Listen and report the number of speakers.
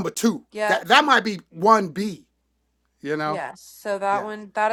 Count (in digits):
2